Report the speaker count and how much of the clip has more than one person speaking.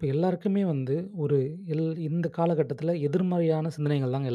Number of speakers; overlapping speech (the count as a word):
one, no overlap